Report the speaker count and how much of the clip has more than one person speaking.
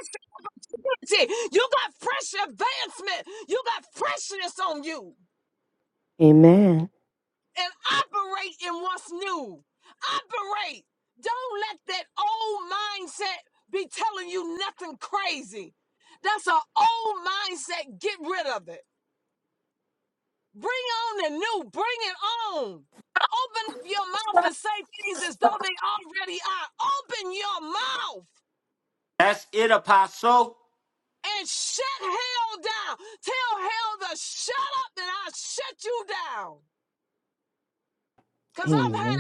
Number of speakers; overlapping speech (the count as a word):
three, about 1%